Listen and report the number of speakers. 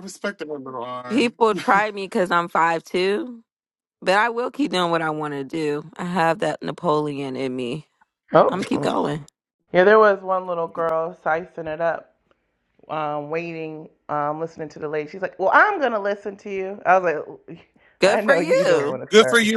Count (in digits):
3